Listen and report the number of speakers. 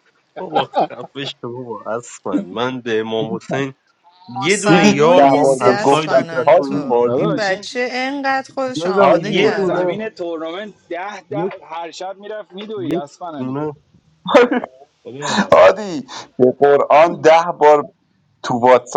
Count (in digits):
4